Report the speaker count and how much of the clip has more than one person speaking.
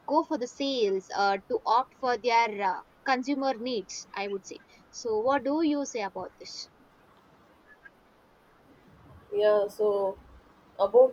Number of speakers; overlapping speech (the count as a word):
two, no overlap